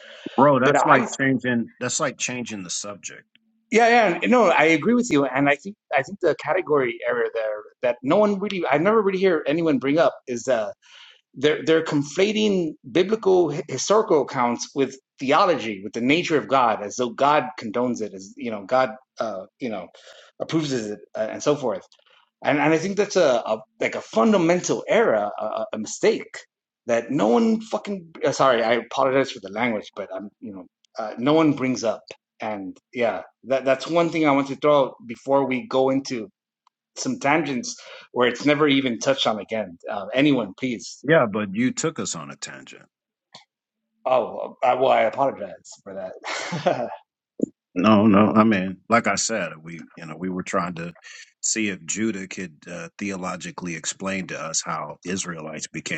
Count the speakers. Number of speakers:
two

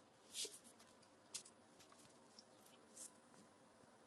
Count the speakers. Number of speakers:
zero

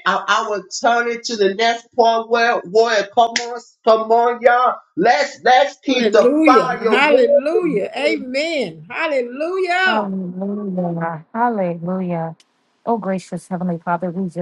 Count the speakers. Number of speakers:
three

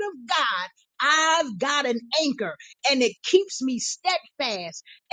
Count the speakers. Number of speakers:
one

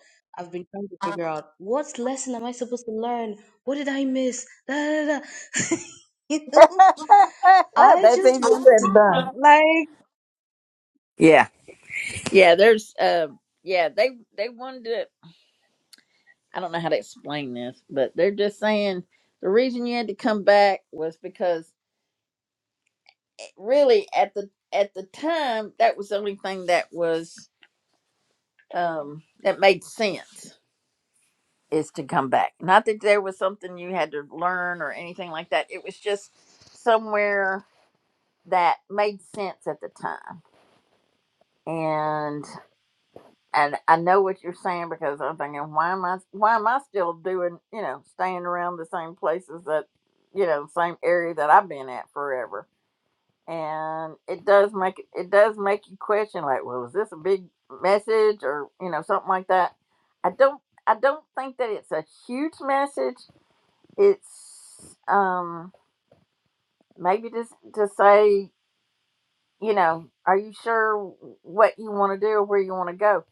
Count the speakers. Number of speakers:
two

